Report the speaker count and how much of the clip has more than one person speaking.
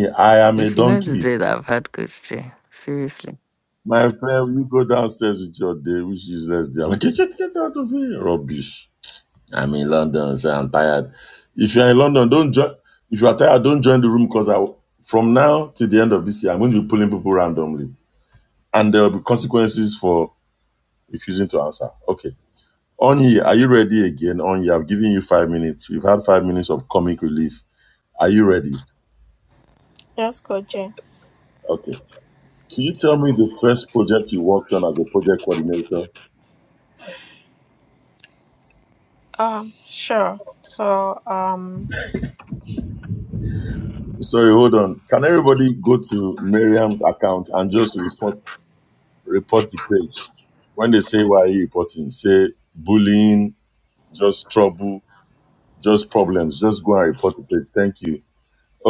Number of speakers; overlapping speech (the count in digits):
3, about 1%